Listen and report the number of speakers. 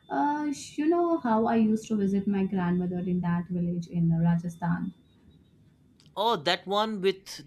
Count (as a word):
two